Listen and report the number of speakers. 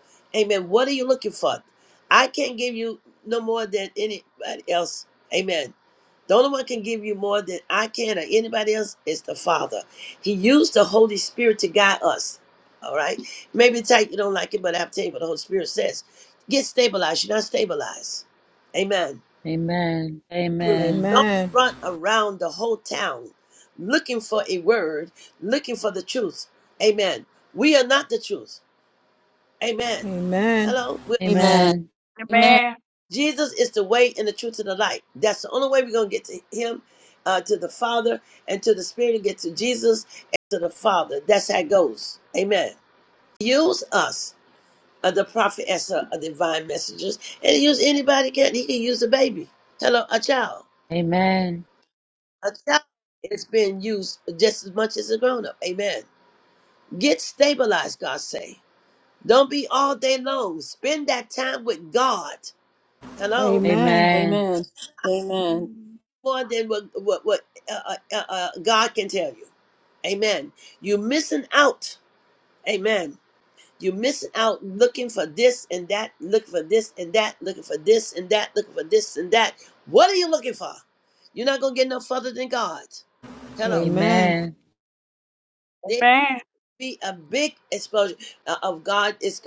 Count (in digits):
5